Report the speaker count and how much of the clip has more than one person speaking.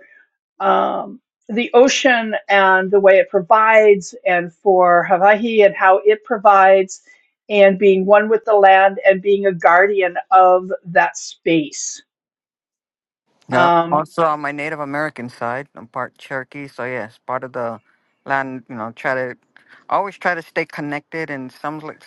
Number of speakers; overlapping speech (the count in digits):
2, about 2%